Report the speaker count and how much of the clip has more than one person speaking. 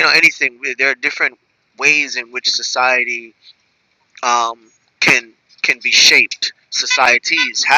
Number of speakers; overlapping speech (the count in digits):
1, no overlap